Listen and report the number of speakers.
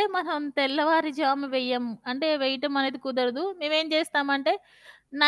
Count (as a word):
one